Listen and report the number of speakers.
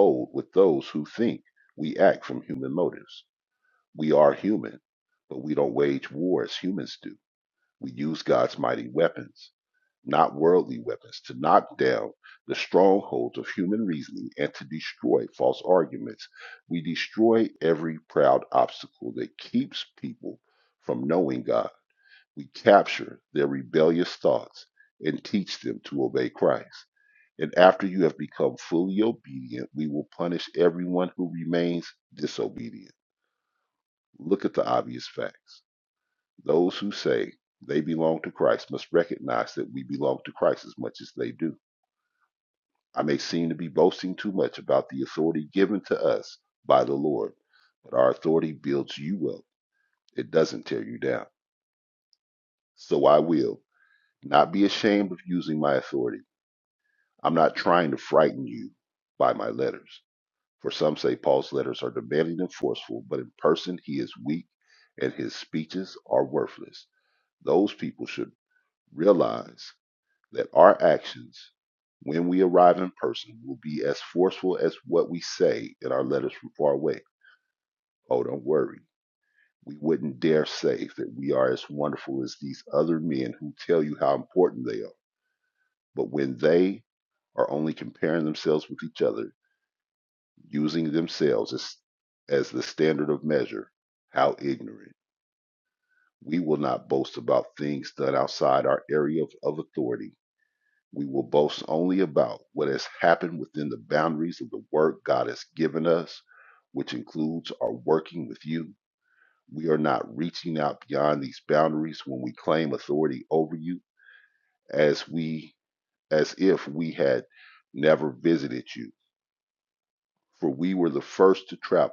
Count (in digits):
1